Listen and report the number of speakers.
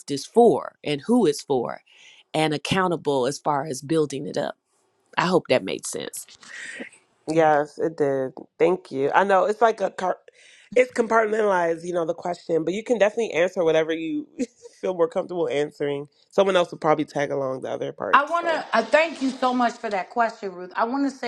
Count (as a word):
three